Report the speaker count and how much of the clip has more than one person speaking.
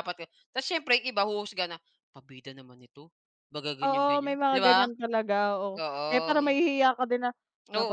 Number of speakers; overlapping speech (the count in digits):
2, about 22%